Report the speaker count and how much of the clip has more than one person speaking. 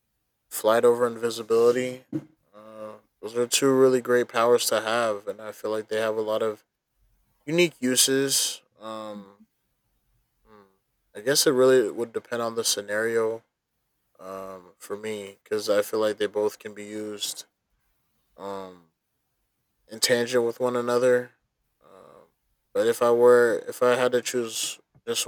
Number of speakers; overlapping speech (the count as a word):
one, no overlap